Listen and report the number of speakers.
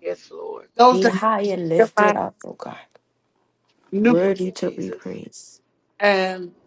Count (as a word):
three